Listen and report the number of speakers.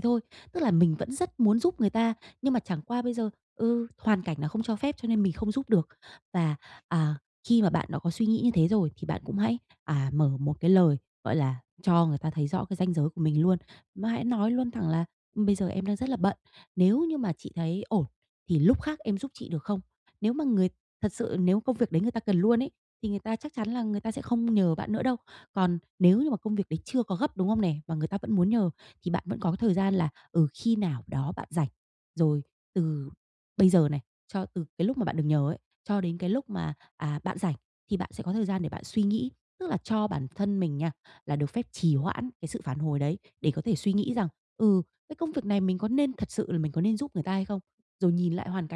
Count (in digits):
1